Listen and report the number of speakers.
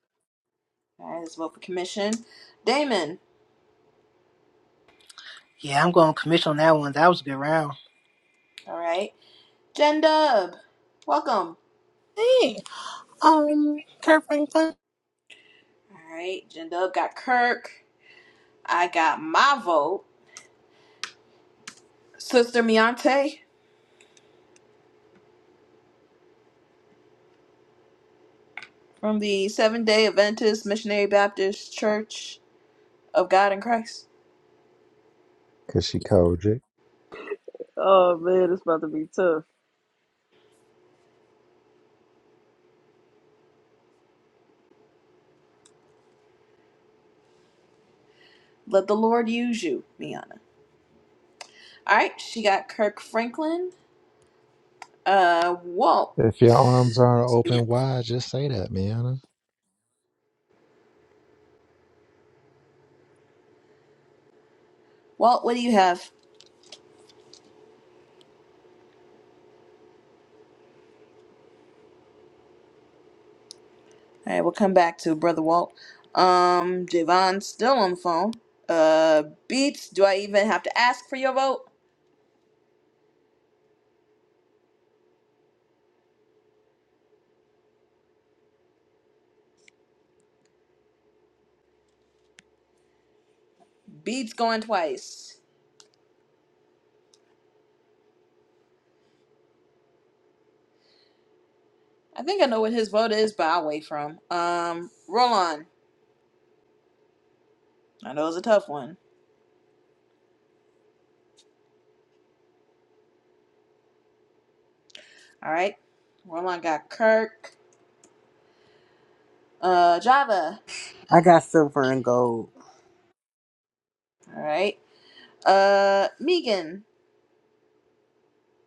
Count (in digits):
6